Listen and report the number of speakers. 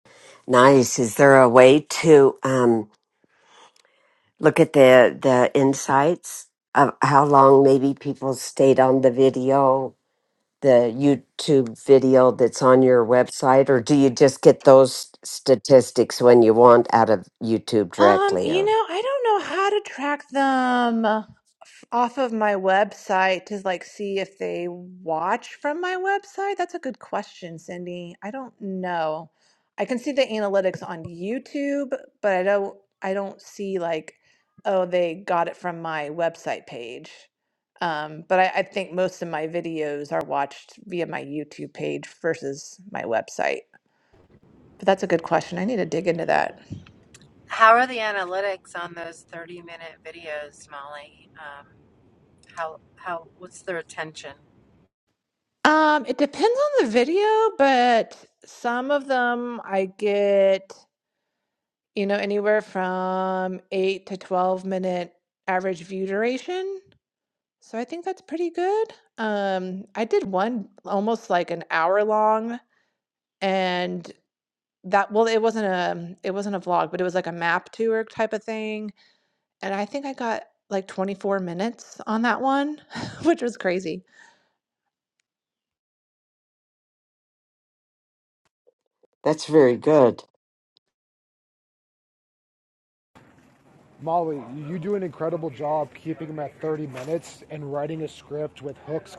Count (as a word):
four